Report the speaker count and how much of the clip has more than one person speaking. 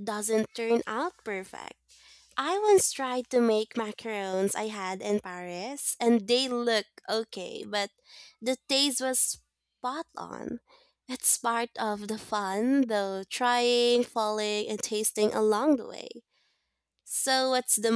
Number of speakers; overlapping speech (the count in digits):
1, no overlap